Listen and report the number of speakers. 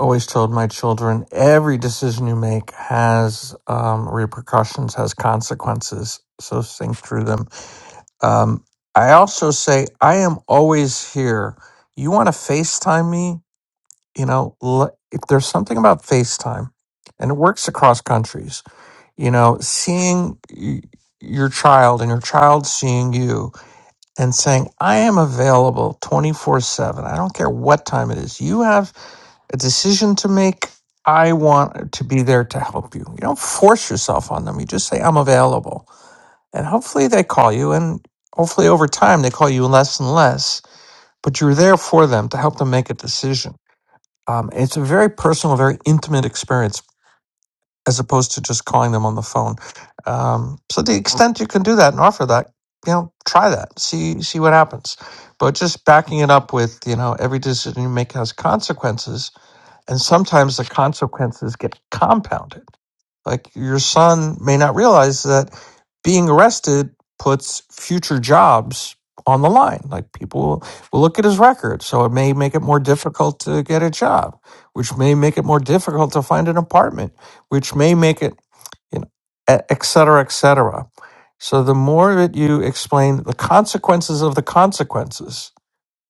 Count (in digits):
1